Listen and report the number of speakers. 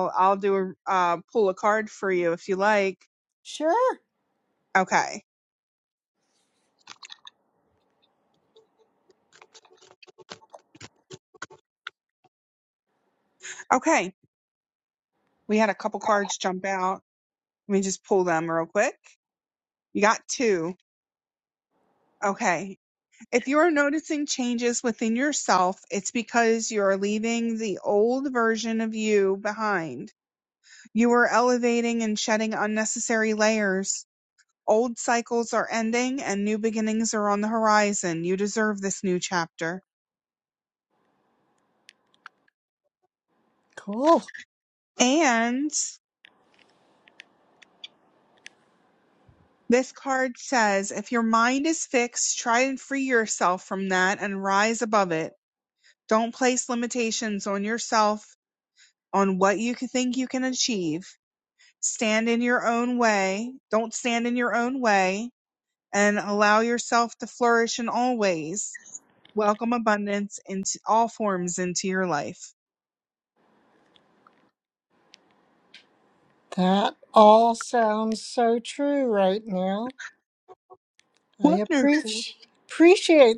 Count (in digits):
2